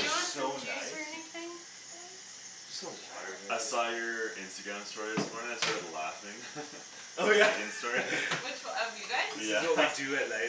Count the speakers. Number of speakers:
four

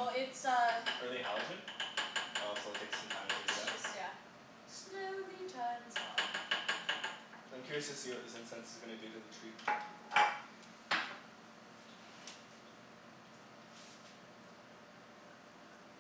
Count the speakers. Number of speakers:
two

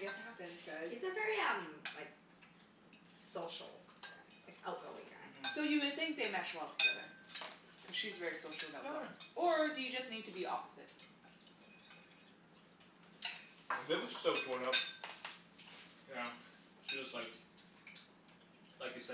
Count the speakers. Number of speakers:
four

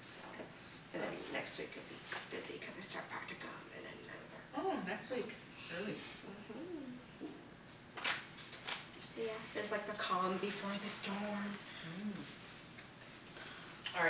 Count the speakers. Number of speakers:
two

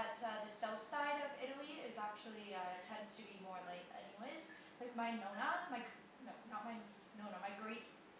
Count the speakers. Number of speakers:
one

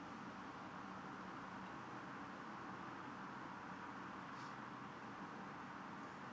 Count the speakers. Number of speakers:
zero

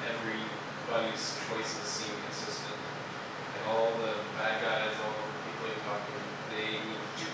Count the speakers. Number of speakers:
one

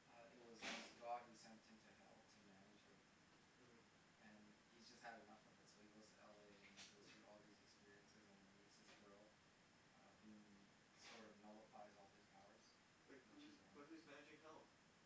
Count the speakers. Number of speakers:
two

